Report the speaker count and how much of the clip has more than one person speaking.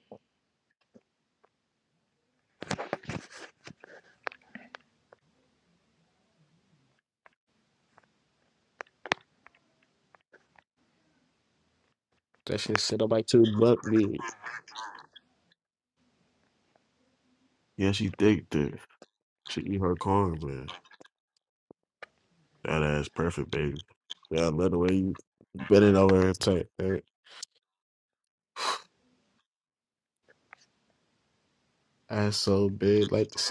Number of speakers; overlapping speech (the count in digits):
1, no overlap